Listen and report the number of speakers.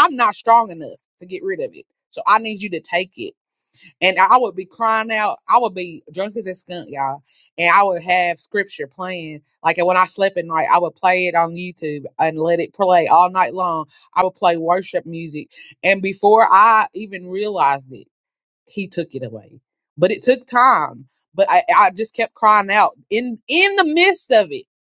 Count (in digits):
1